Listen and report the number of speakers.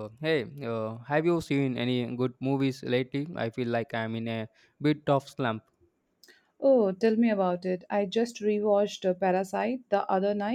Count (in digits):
2